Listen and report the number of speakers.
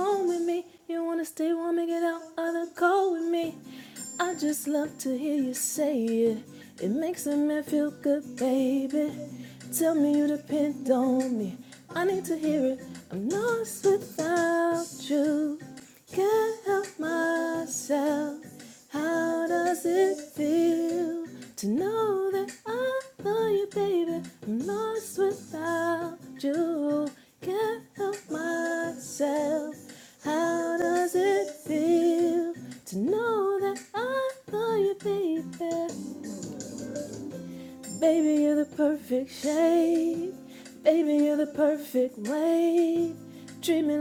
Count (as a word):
one